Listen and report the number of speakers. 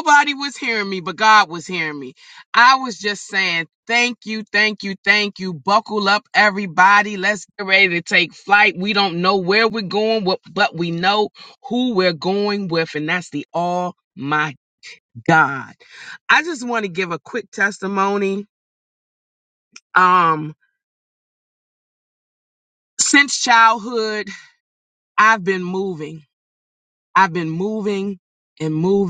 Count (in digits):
1